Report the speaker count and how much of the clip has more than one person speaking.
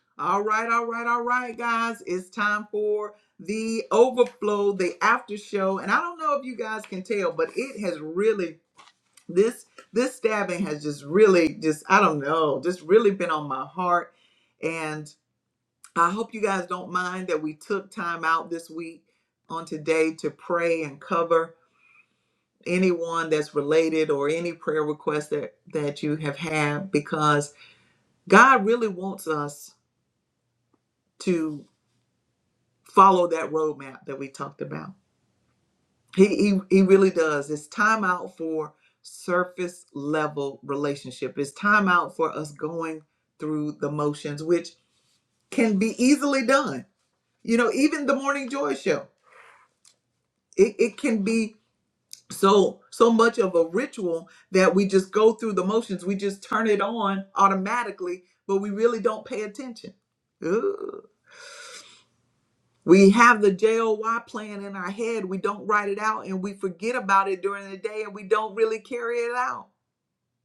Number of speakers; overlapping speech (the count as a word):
one, no overlap